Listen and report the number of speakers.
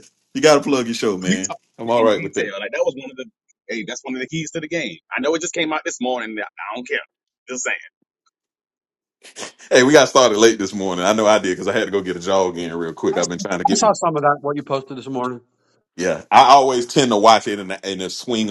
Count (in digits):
3